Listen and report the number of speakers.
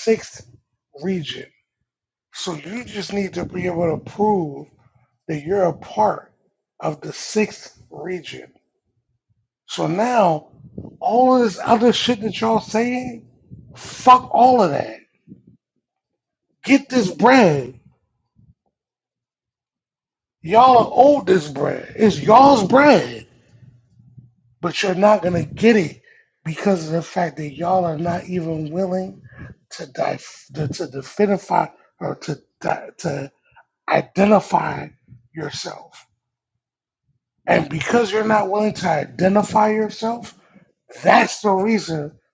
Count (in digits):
1